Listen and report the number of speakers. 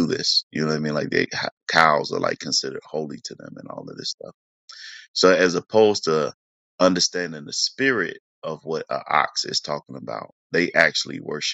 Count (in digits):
1